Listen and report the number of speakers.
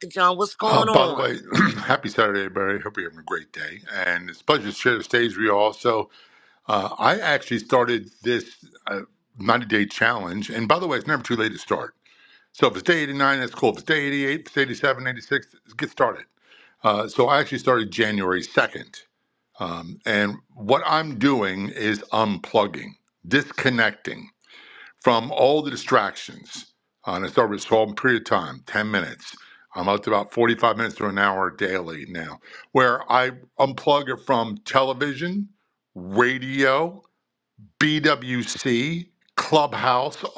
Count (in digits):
2